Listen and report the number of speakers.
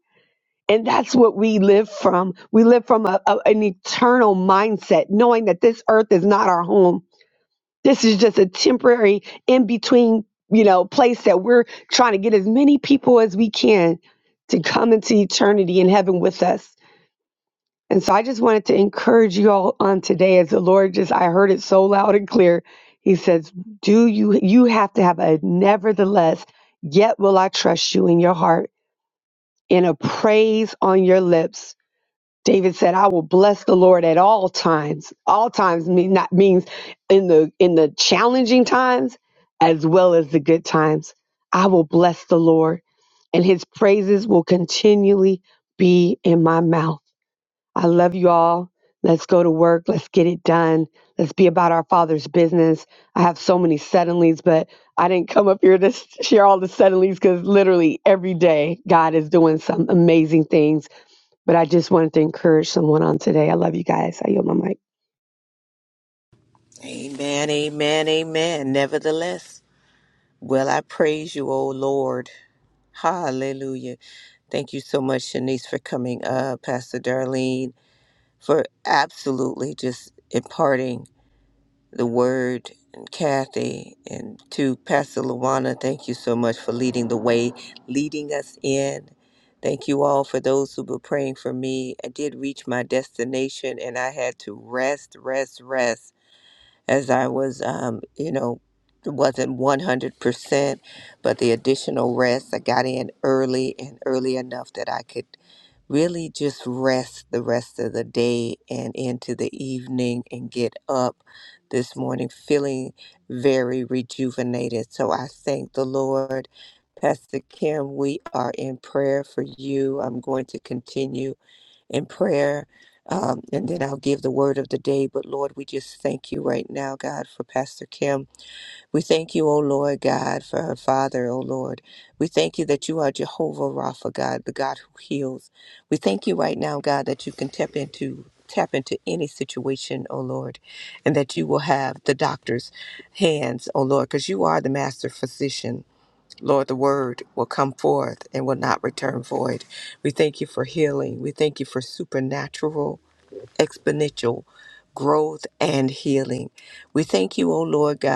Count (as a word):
two